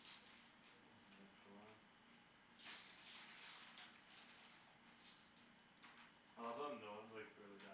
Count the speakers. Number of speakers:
one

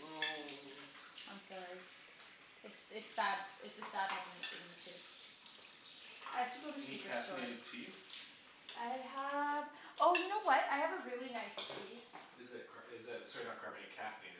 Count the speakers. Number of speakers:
two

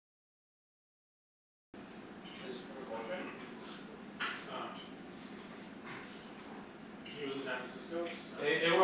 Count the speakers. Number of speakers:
two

